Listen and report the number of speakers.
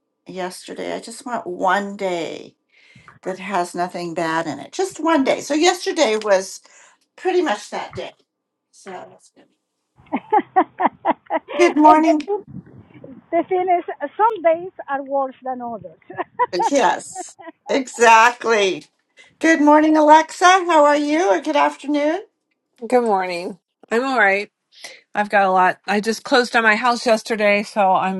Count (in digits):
3